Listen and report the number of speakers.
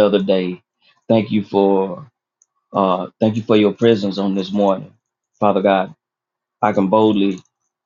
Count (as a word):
one